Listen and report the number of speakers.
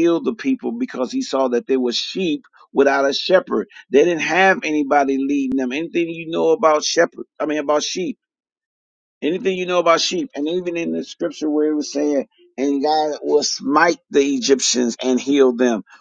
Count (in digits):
1